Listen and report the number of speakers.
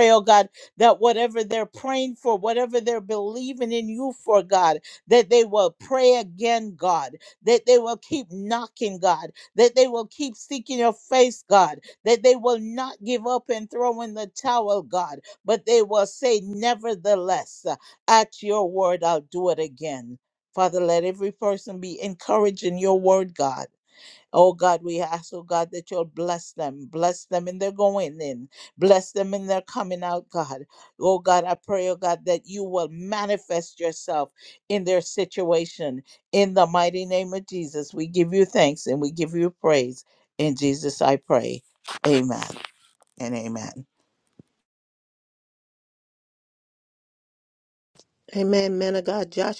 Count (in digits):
2